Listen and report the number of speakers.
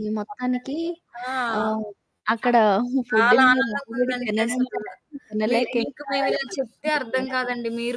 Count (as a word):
two